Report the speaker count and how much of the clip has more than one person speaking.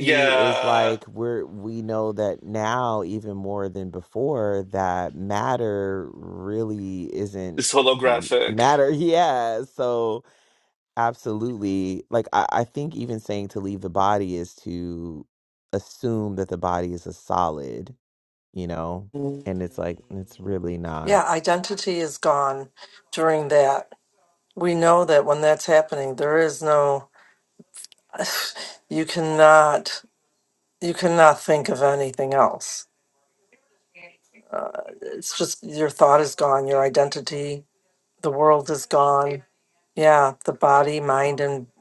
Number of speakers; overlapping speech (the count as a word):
three, about 4%